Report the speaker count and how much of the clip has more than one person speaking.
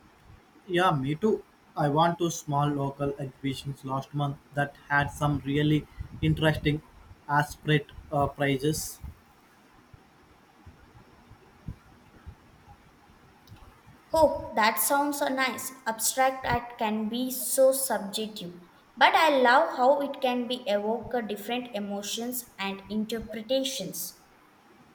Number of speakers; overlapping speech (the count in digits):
2, no overlap